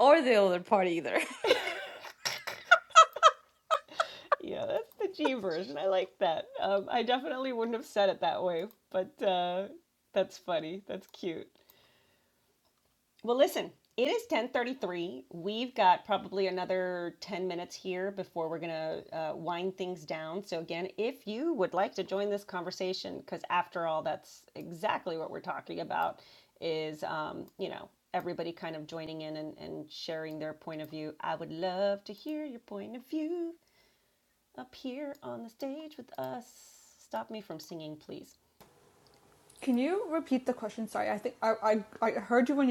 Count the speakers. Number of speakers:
3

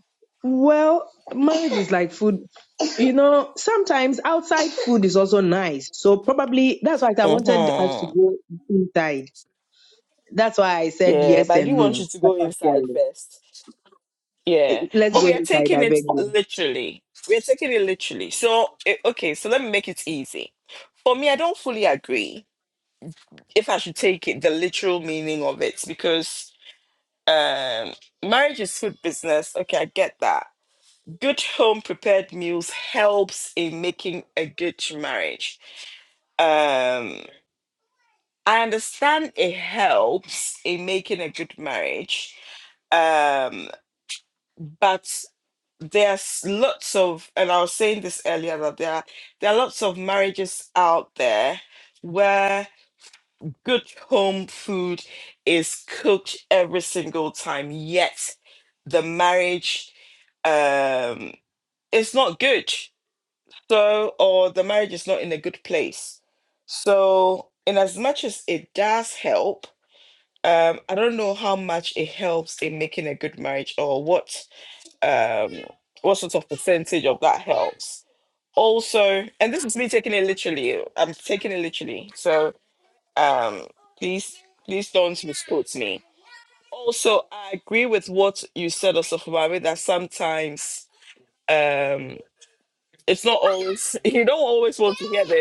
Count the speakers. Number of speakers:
2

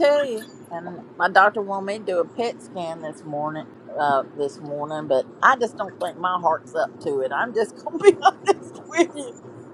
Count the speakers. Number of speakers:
1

